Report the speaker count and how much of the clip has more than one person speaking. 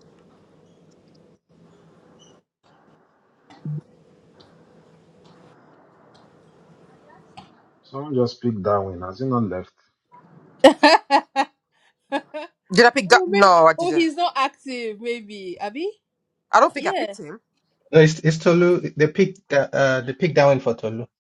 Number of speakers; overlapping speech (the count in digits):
4, about 6%